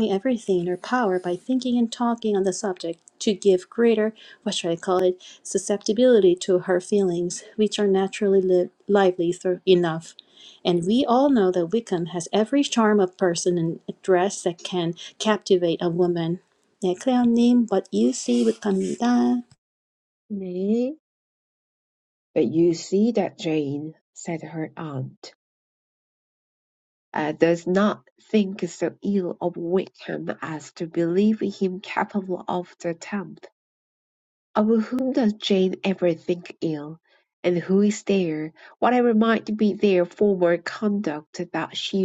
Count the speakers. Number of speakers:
two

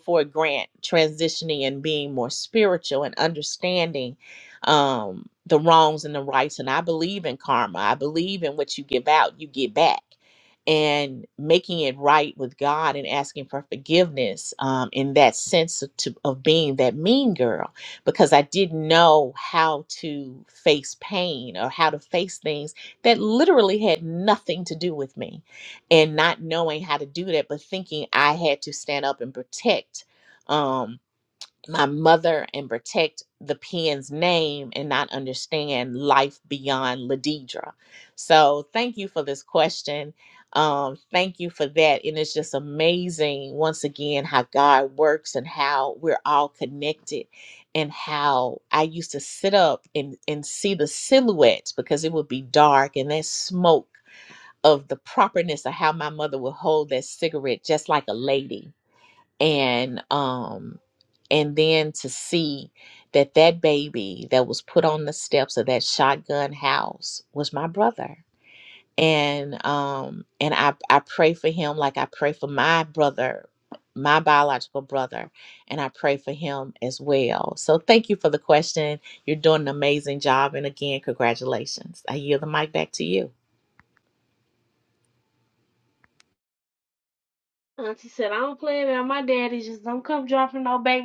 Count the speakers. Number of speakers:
two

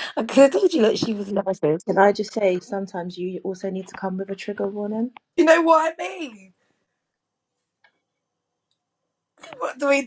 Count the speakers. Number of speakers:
three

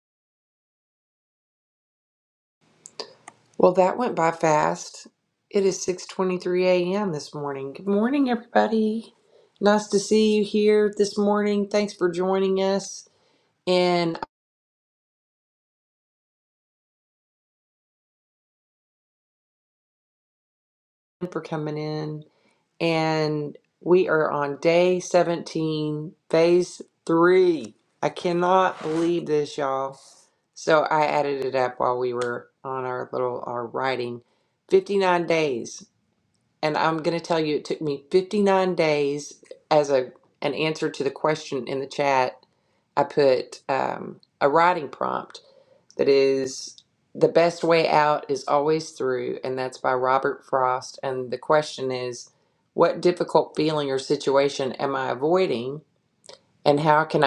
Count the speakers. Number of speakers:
one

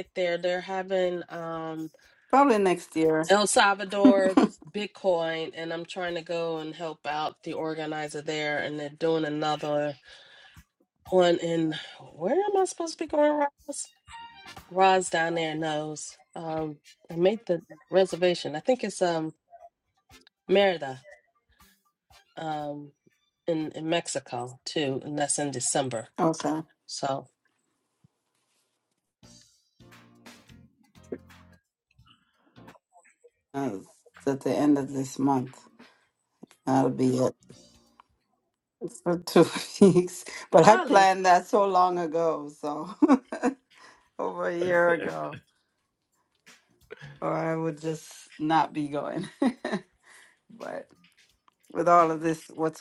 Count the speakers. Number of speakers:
two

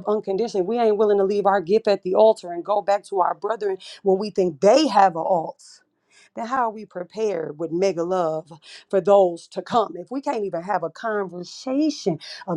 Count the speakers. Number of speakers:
one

